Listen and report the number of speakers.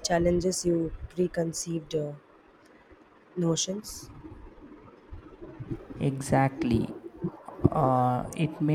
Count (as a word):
two